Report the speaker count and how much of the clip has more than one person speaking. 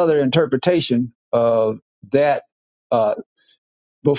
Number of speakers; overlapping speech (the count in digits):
1, no overlap